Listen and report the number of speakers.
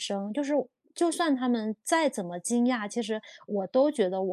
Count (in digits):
1